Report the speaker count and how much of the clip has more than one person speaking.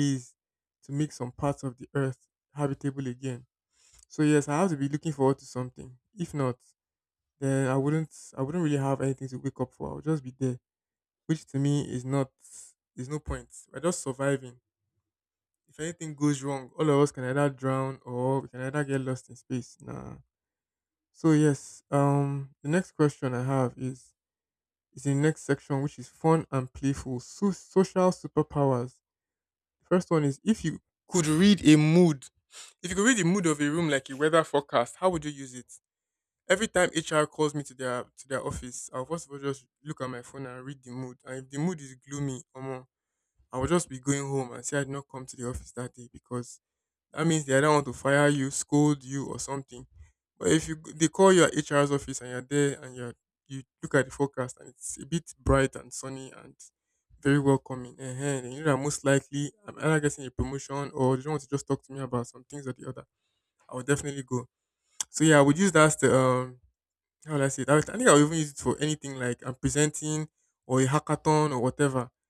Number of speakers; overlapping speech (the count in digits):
1, no overlap